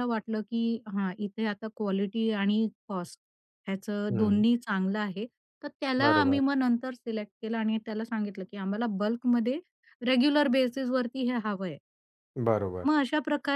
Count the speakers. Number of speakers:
2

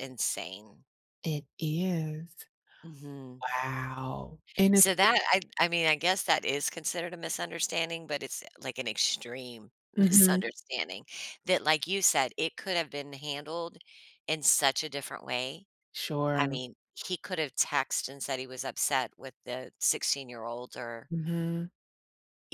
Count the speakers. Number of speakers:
2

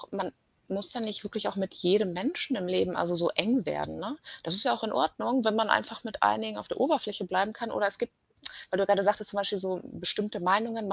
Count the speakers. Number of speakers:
1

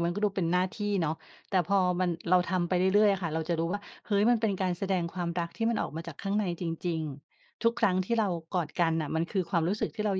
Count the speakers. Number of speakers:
1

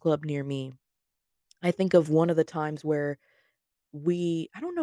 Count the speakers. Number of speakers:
1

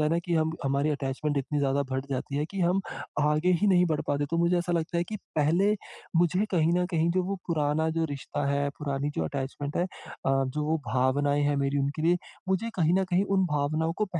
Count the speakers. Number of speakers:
1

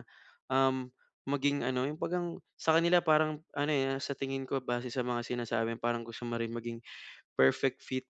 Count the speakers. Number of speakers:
1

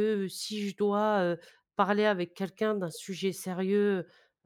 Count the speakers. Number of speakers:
1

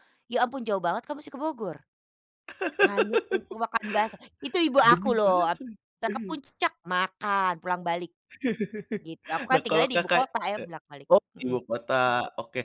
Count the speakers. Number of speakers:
2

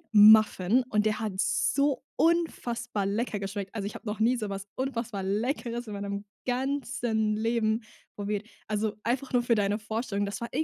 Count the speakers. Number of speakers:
1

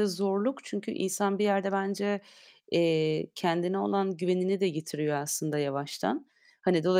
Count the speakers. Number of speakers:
1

